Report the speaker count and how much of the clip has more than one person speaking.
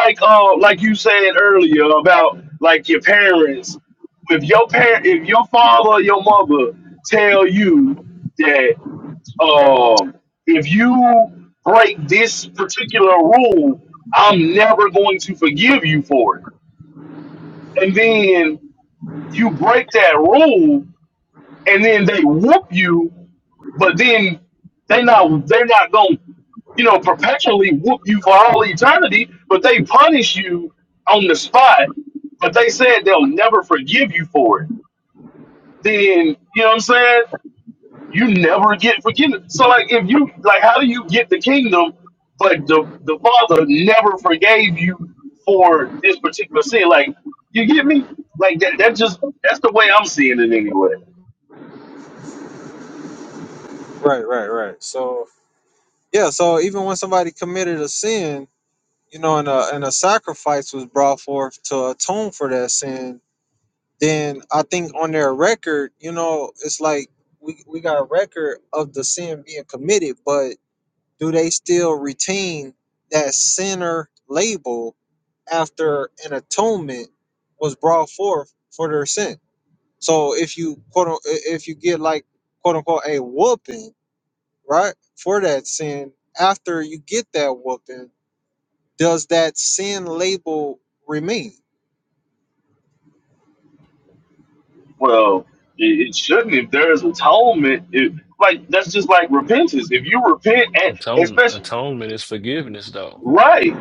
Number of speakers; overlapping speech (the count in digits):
3, about 1%